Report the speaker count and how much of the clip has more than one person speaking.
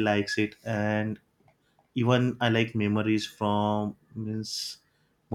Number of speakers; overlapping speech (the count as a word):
one, no overlap